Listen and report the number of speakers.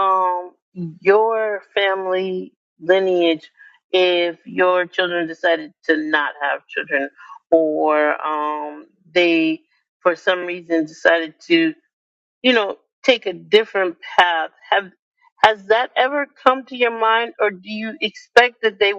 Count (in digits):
1